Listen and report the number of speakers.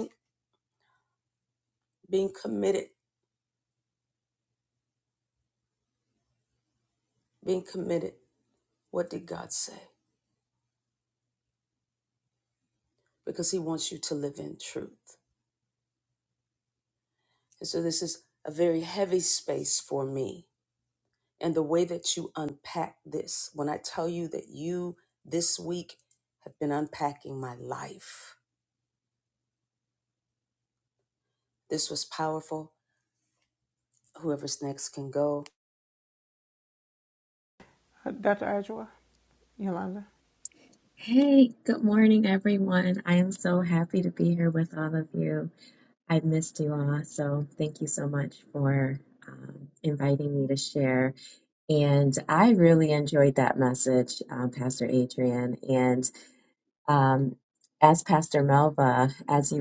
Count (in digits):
3